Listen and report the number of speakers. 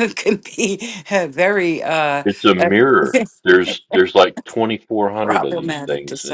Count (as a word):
two